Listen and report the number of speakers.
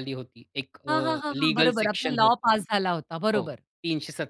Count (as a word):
two